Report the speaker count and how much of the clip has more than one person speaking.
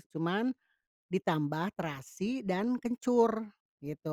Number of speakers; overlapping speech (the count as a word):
one, no overlap